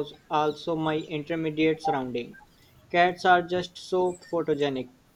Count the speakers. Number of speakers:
one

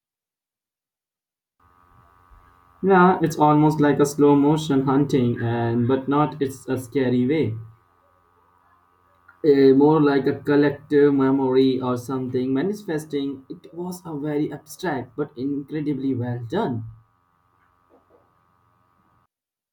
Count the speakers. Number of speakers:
one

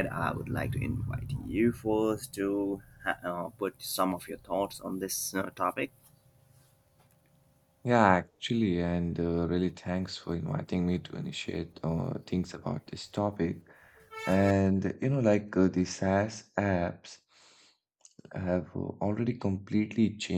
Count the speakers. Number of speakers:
two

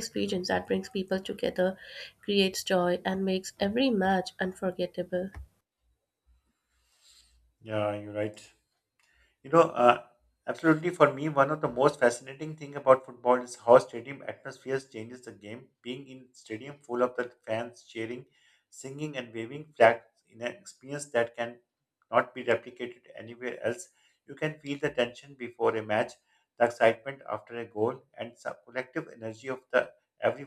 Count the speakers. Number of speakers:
two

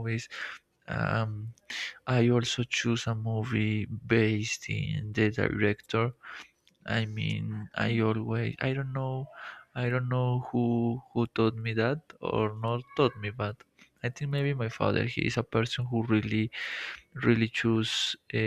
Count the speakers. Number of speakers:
one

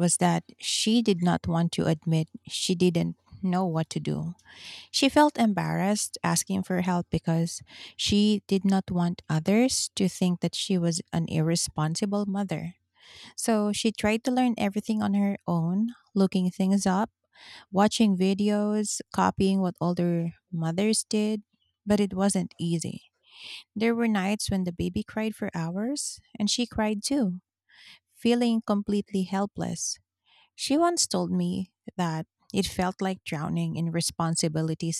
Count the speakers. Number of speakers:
one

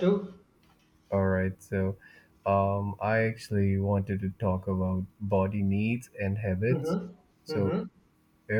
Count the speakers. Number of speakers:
two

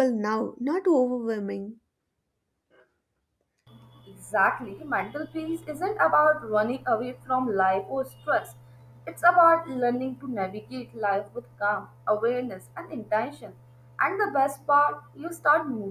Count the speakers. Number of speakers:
two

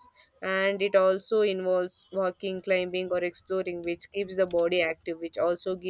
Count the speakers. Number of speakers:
one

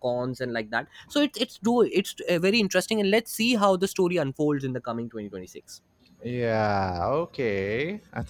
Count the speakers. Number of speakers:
two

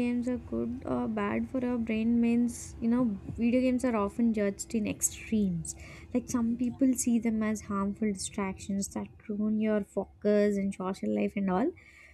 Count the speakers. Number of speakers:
one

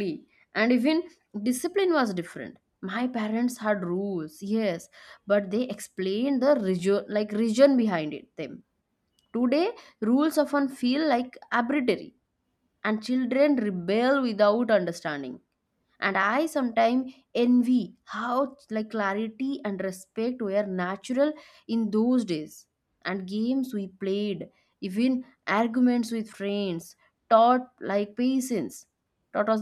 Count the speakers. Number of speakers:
one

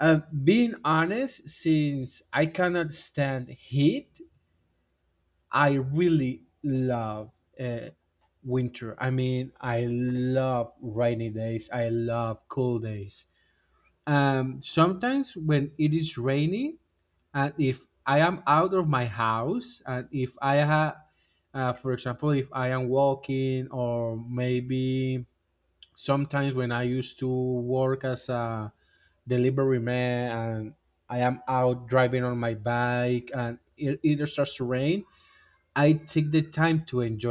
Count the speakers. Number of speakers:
one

